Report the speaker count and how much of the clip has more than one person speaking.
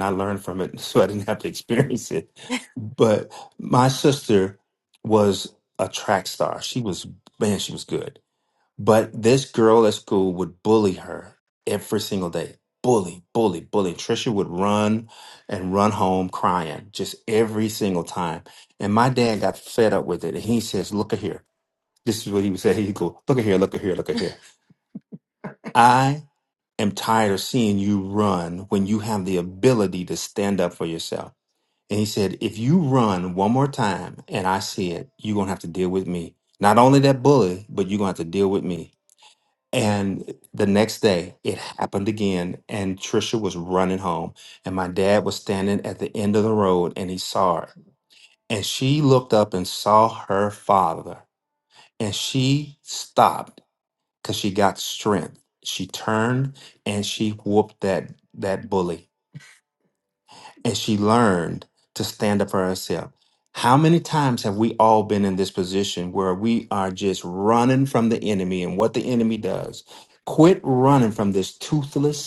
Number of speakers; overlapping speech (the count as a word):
one, no overlap